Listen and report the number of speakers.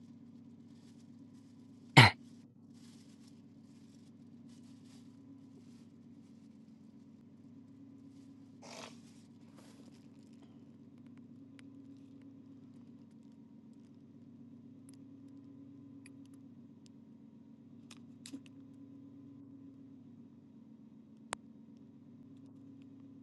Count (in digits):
0